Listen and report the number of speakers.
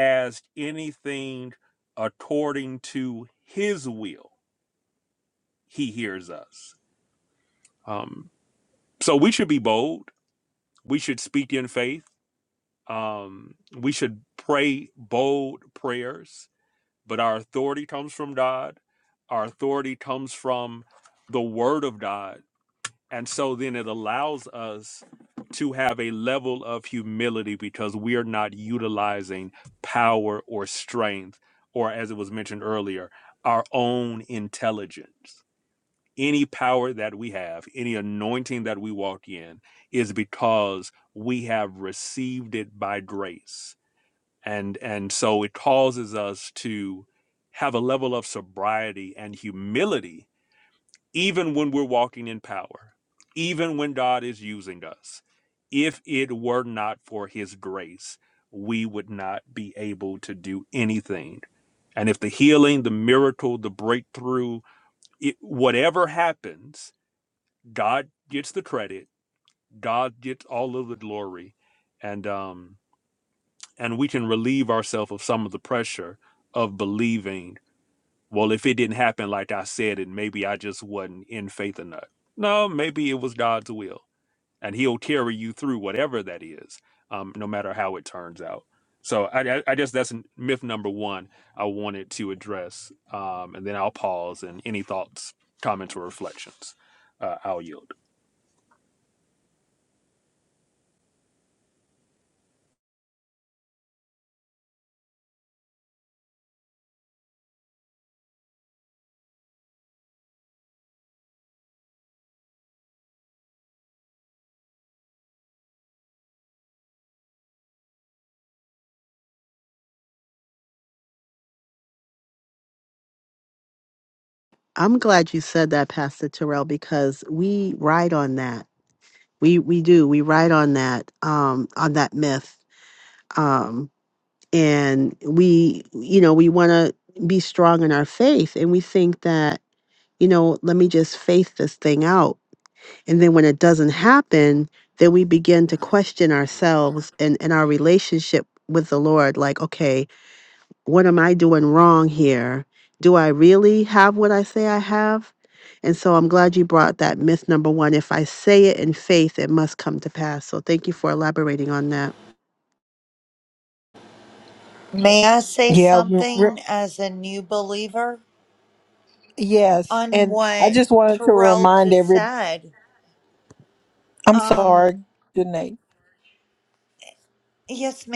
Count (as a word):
four